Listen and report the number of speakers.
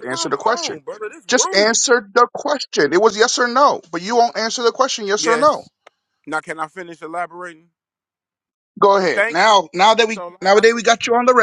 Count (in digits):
2